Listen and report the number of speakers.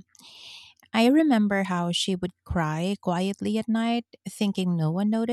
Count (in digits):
1